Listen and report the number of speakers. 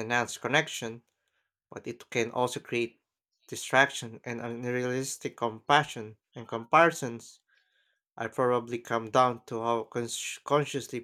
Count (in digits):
1